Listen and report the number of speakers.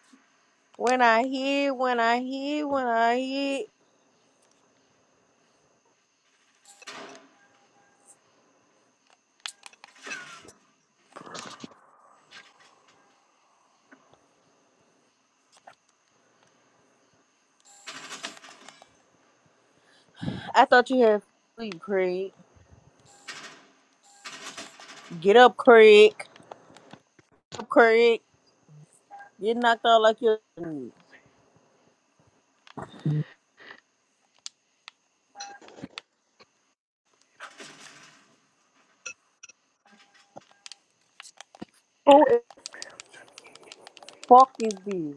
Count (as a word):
one